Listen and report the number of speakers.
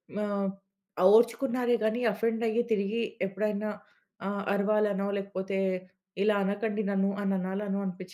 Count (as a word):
one